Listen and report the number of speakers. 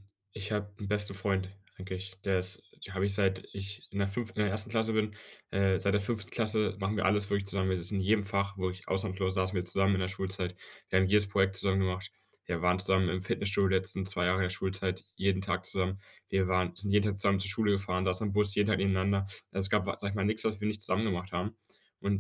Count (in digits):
1